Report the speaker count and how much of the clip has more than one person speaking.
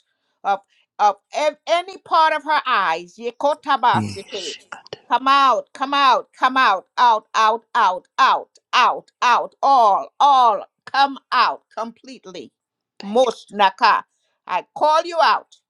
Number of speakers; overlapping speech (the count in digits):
2, about 4%